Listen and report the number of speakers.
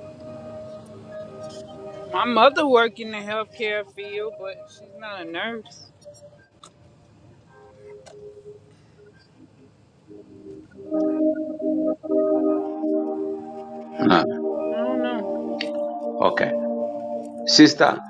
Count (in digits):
2